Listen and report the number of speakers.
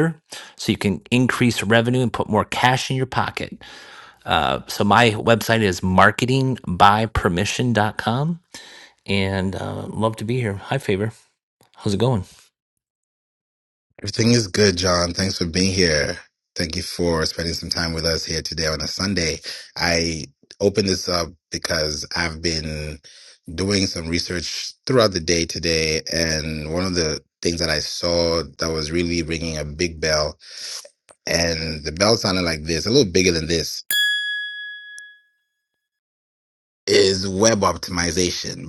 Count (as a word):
two